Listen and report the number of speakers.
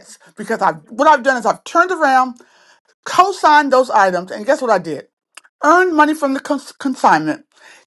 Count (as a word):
one